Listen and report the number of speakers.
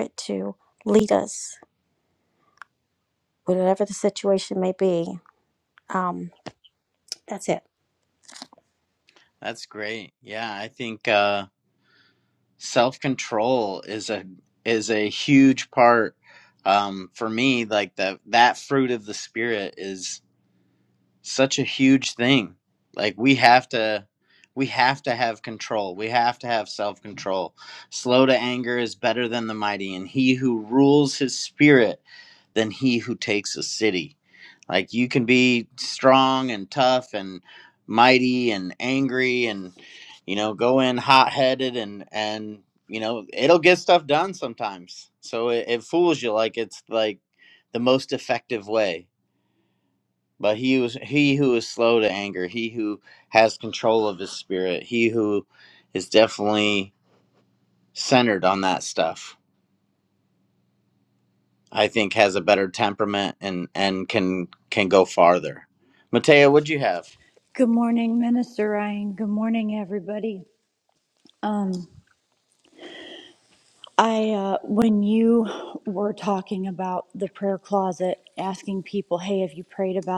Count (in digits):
3